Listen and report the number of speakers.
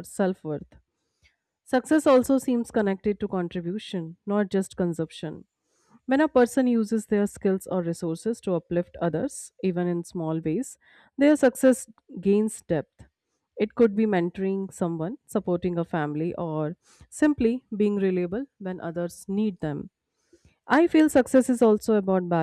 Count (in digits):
1